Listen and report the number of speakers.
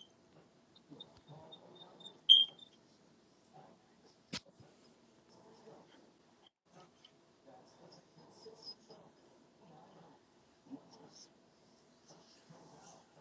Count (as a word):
zero